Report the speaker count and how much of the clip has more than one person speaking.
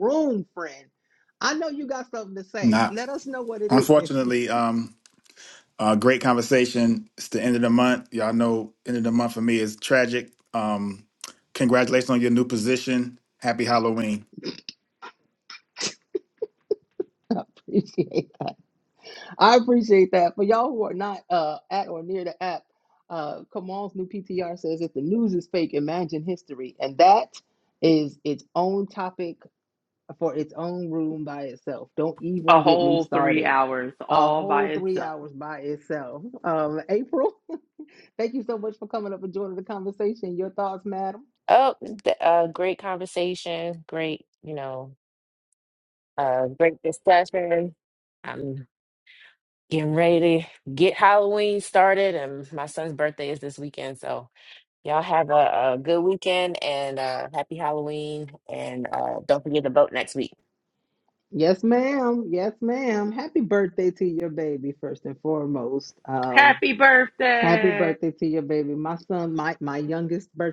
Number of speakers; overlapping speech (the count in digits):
4, about 5%